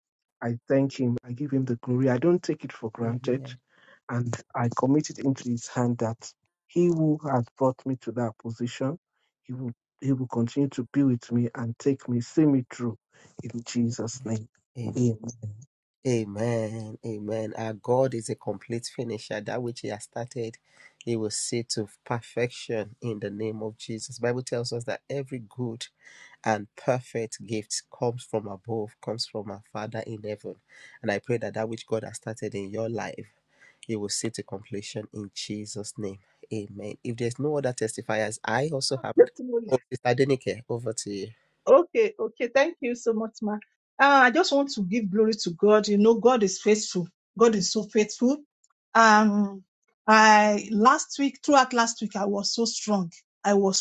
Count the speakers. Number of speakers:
3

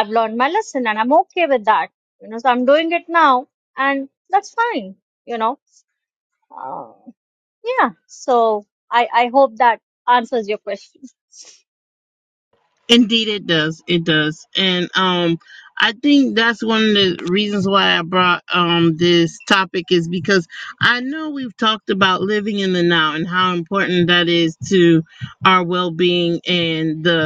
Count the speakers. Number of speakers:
2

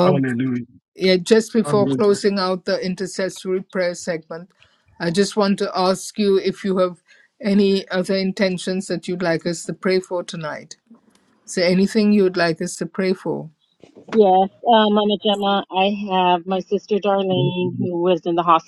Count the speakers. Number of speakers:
3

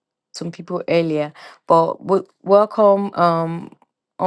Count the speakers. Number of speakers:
1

